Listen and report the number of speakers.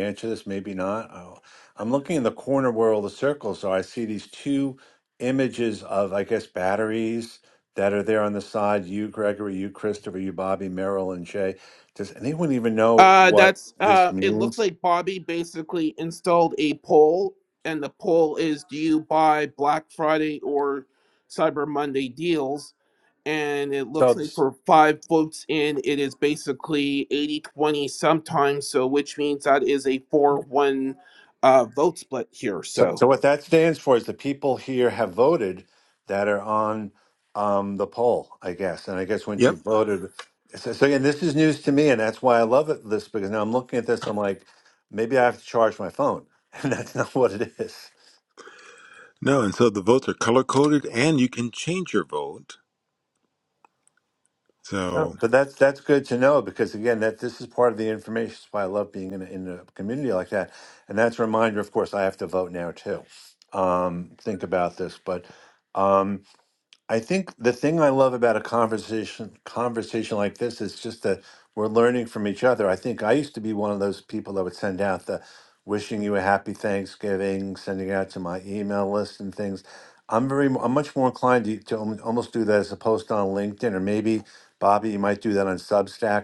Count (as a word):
three